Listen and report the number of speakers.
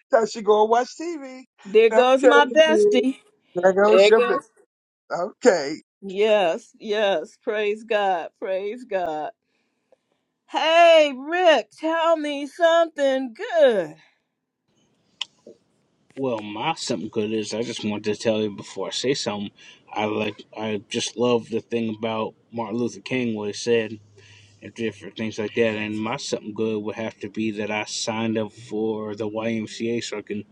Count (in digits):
3